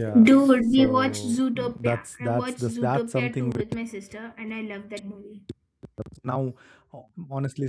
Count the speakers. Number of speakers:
2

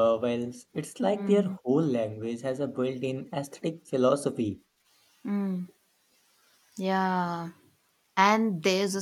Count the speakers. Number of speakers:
2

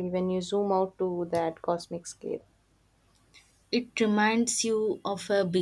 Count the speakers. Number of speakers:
2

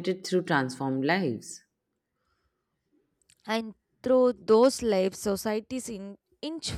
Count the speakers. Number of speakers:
2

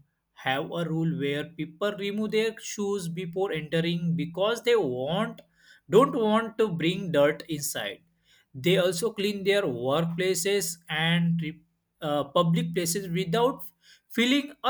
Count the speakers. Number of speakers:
1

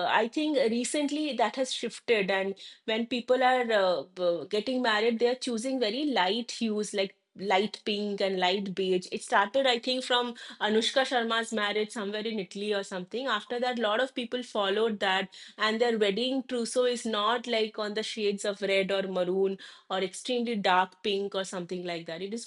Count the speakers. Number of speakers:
1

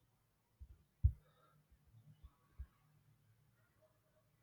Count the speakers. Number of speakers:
0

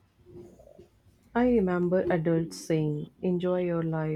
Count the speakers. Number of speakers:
1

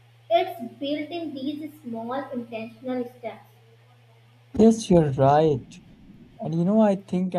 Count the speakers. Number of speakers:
2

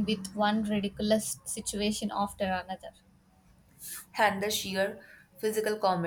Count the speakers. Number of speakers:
2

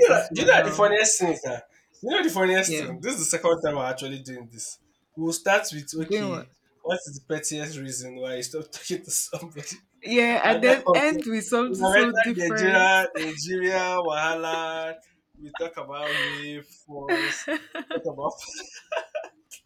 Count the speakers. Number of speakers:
2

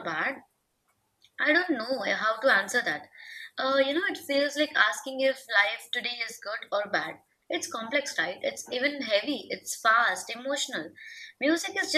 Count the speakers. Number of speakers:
1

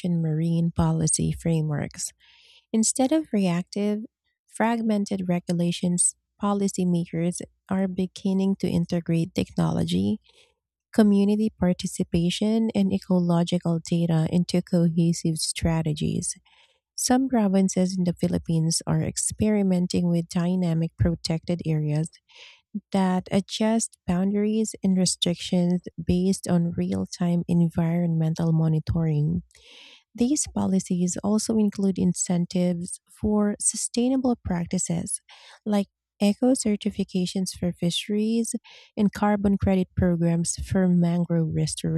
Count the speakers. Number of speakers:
1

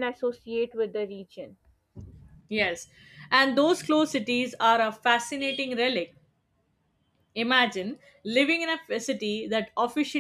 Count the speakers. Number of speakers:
2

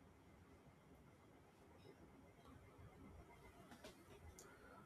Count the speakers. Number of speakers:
0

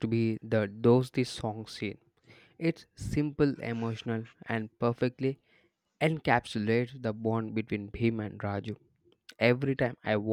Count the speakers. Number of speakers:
1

